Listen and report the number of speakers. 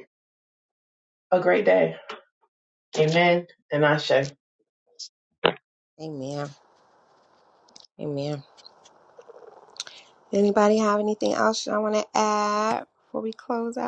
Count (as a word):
two